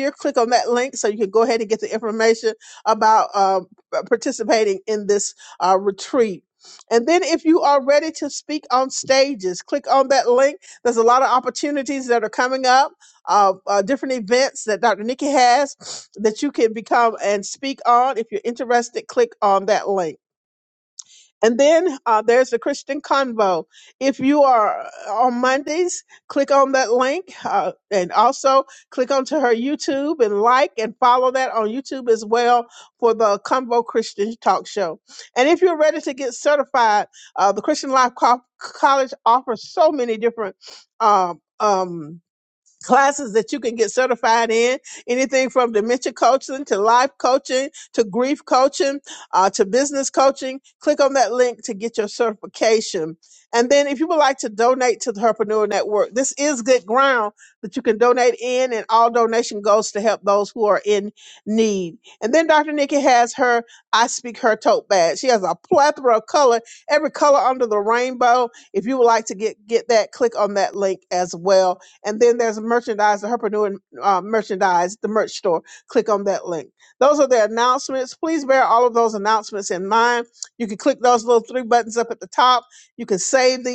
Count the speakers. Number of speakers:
1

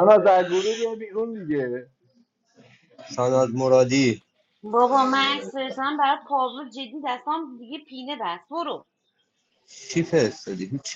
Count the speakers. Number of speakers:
3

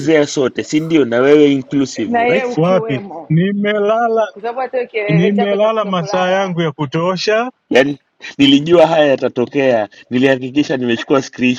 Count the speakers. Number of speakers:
3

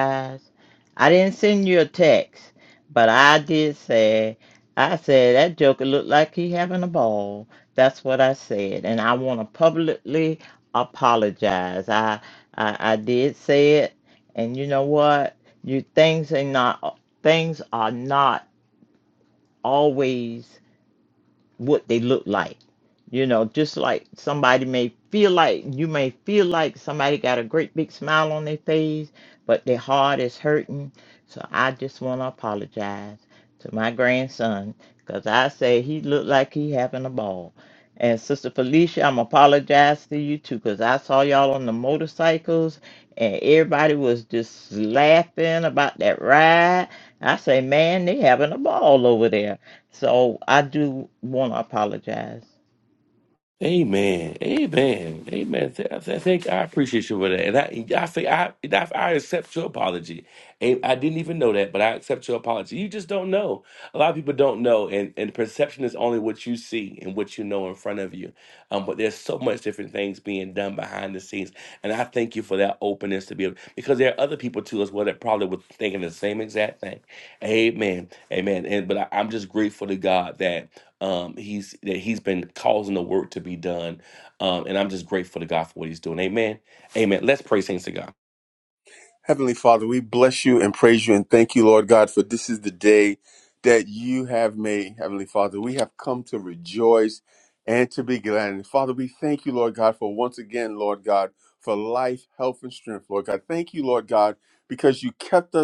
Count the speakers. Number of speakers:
3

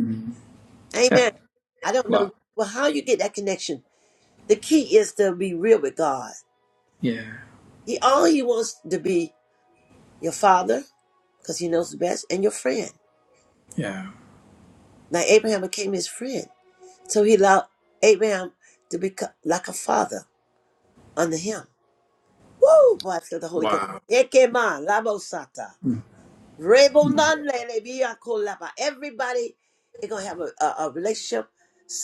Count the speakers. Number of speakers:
2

